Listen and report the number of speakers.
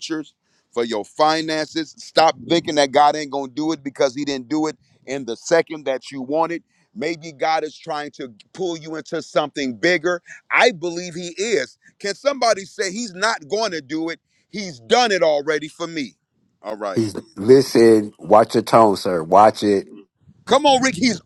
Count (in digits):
2